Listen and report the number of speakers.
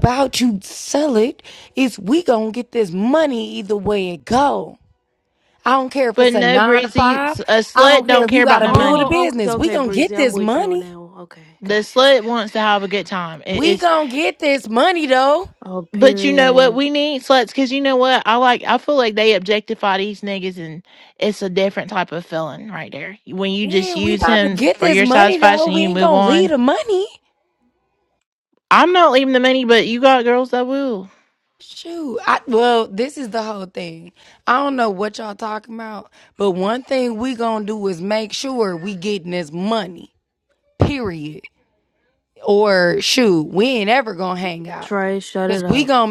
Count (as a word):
three